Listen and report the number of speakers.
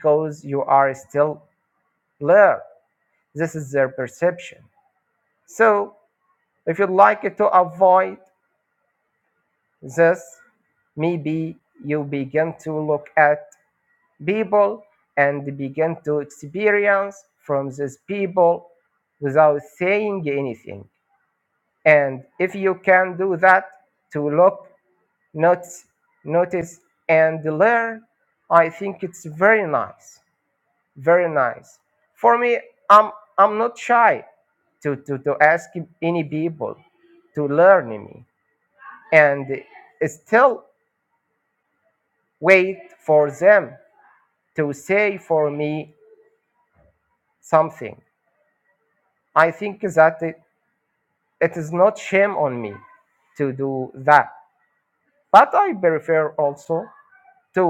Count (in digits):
1